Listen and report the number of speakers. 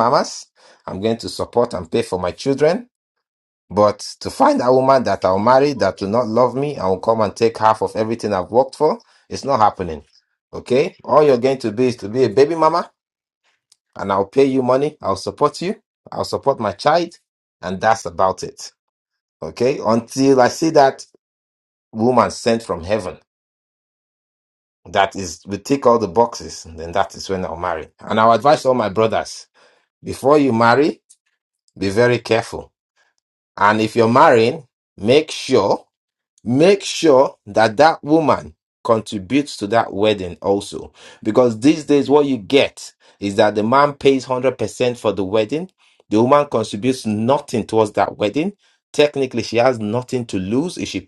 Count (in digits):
1